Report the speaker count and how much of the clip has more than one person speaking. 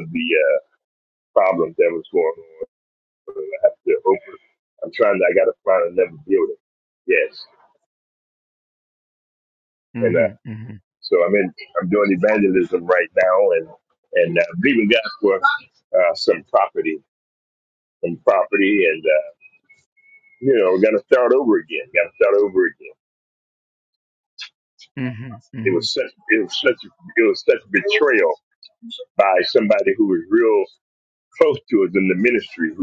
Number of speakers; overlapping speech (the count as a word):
two, about 1%